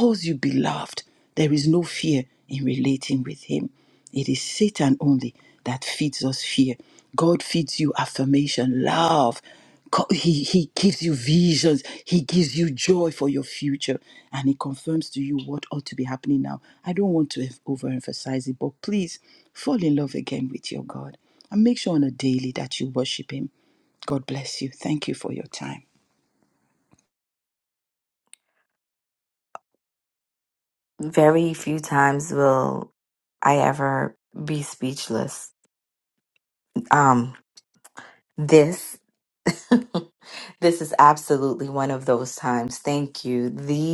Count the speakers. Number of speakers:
two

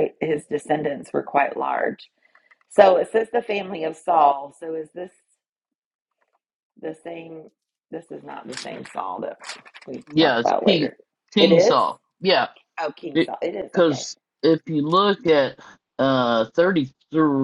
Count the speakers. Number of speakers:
two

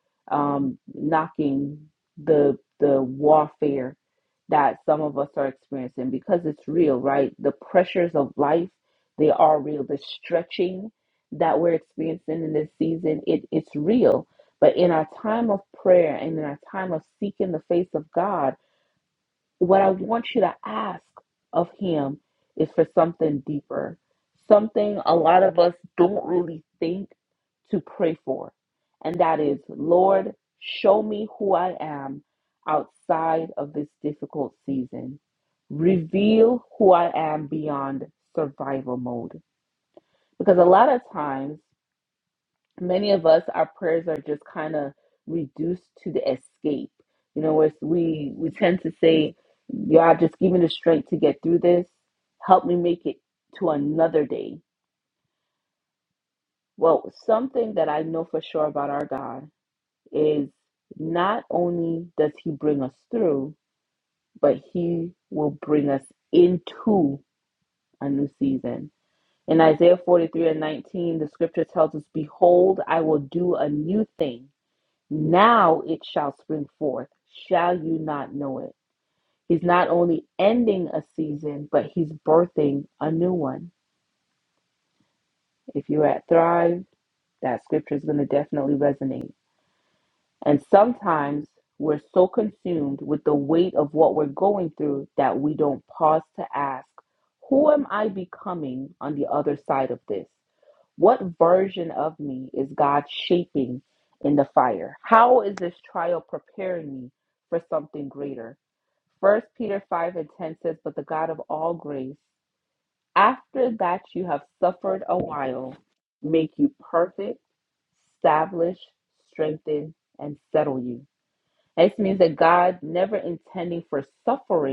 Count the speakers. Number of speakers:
one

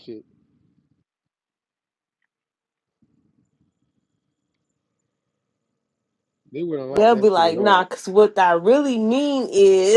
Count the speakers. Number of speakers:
two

